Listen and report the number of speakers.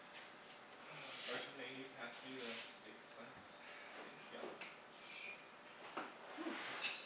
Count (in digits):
1